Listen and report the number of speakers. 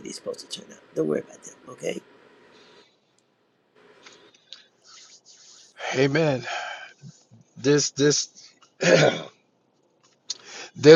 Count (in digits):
2